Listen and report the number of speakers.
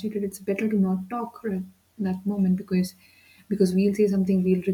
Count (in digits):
1